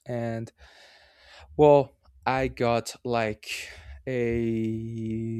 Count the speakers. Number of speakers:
1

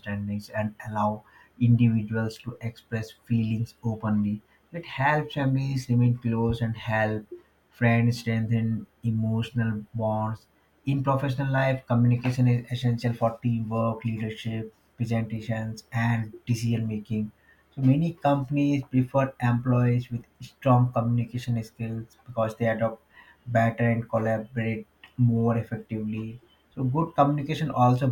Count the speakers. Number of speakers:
1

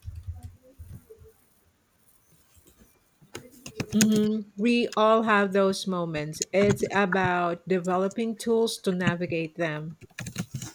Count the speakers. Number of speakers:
1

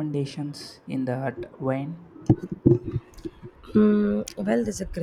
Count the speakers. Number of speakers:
2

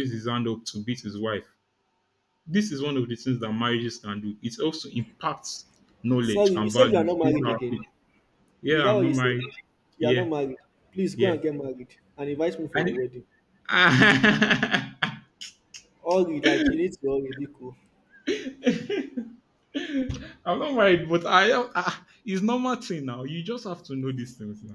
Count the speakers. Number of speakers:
2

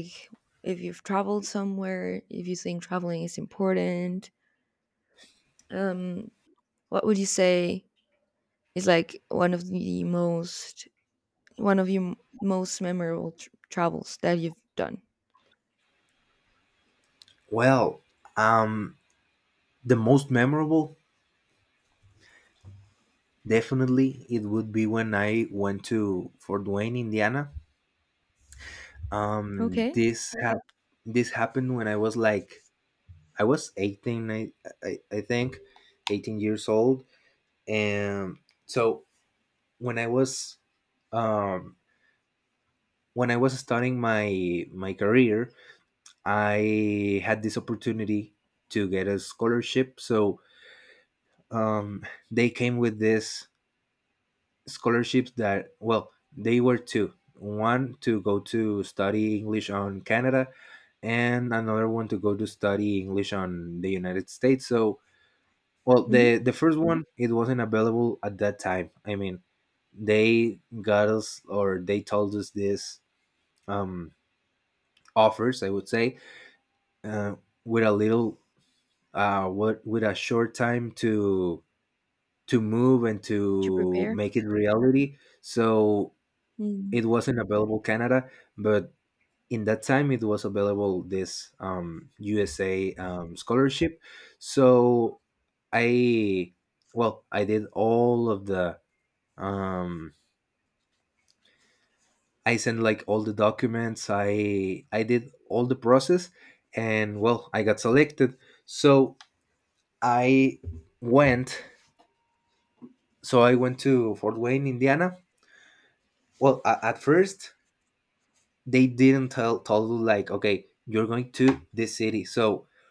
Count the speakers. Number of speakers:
2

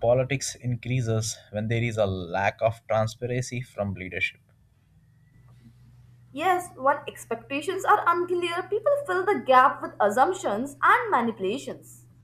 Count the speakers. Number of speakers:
2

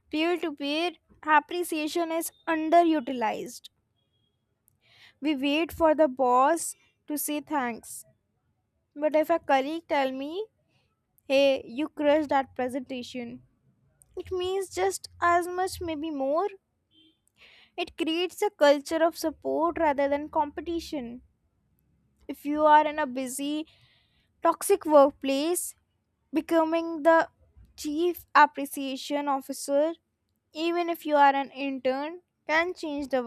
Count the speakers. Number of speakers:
1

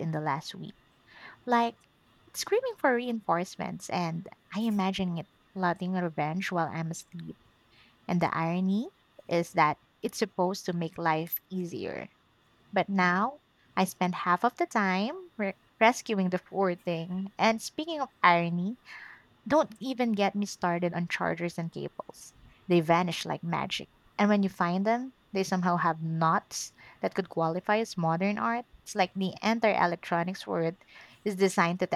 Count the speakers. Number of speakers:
1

